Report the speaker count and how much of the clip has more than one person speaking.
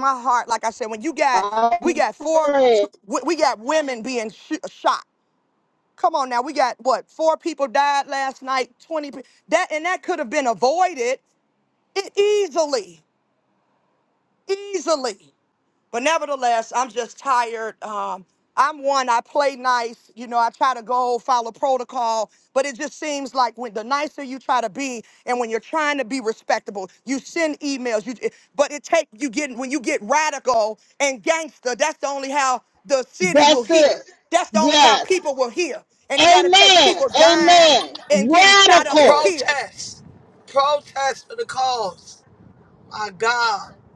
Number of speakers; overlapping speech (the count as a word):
three, about 11%